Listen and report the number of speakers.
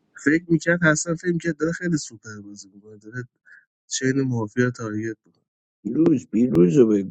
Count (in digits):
2